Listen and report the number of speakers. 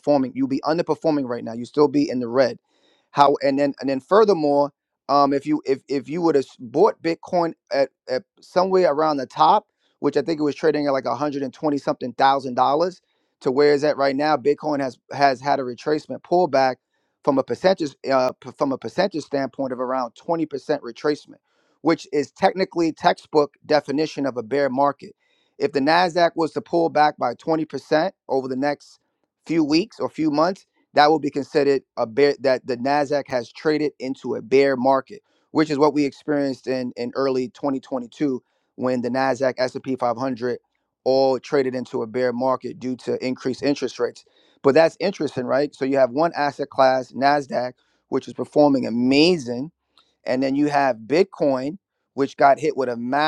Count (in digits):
1